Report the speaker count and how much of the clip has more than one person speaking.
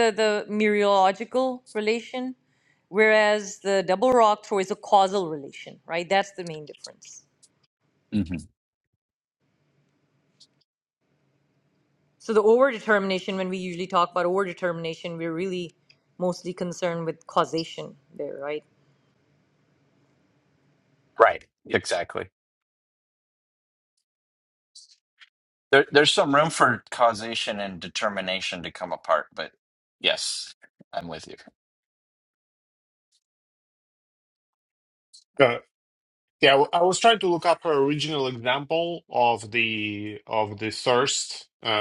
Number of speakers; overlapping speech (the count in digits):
3, no overlap